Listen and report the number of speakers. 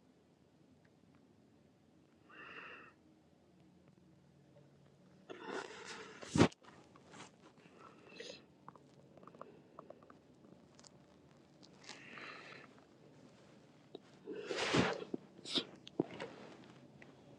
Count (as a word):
zero